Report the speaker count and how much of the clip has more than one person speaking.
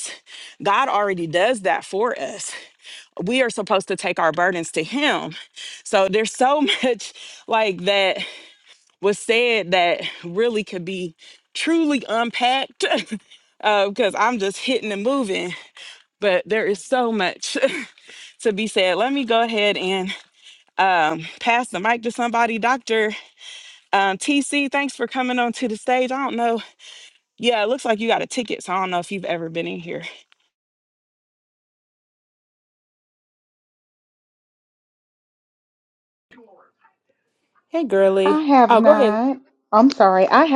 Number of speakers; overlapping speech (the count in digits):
3, about 1%